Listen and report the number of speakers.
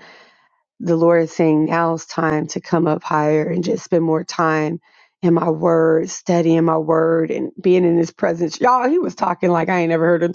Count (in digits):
1